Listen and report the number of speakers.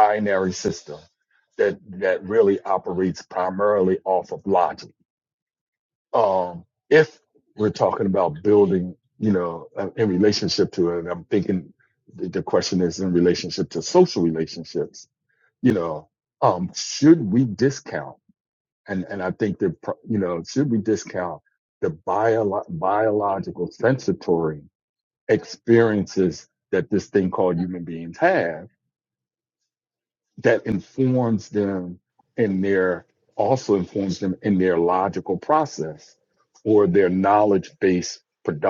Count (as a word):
one